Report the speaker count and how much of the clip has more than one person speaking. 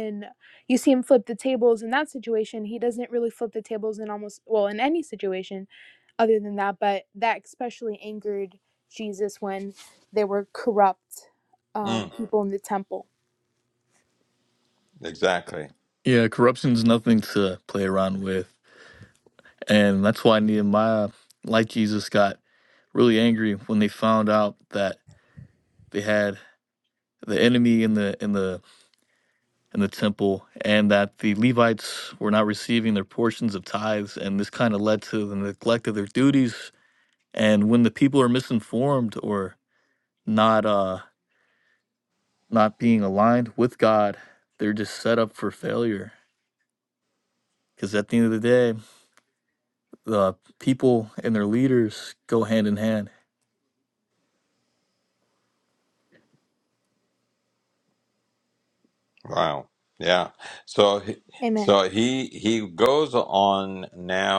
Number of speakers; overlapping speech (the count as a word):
three, under 1%